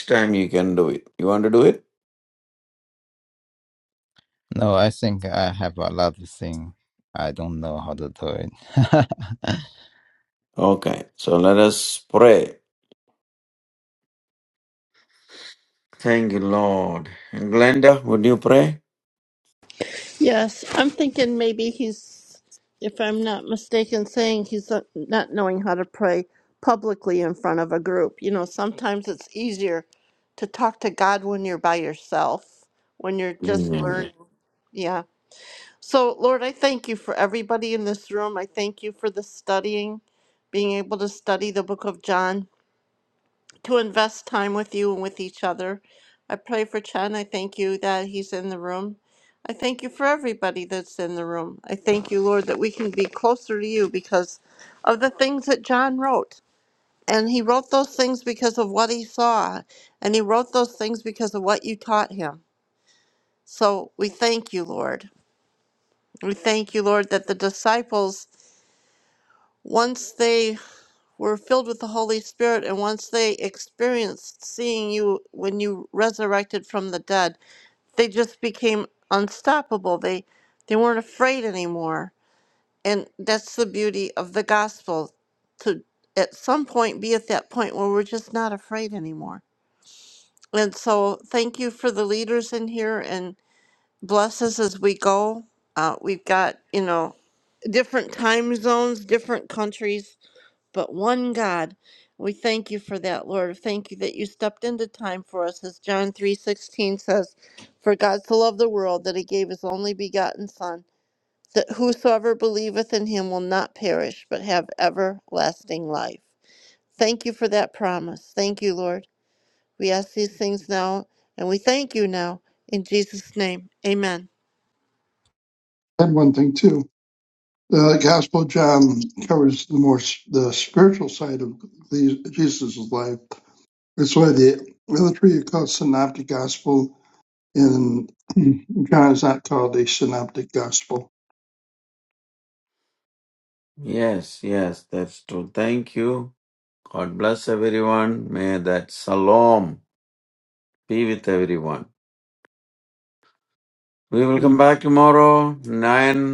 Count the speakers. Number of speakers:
4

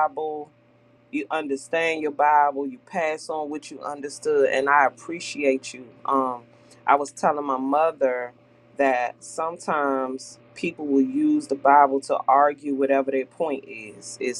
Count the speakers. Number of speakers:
1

